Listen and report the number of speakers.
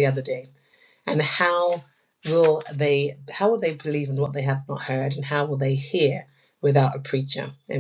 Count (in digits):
1